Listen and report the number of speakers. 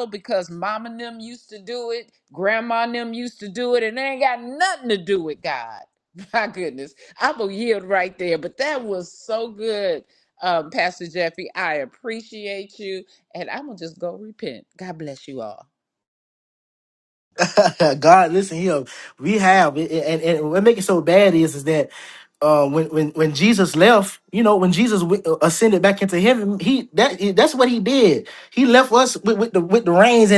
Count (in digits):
2